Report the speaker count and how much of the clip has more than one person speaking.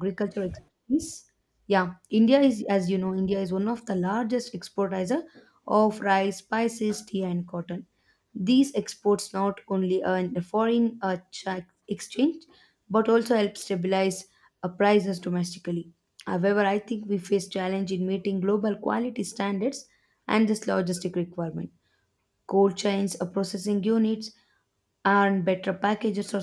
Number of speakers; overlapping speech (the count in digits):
1, no overlap